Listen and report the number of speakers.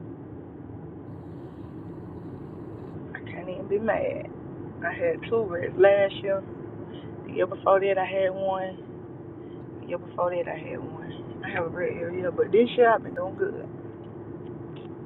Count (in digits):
1